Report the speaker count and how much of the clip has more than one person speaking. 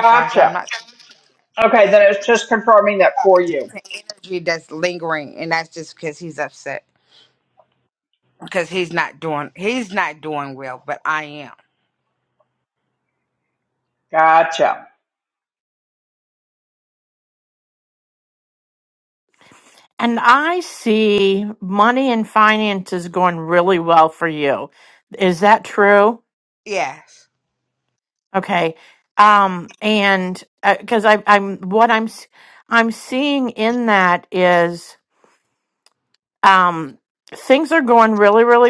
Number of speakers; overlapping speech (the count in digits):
3, about 2%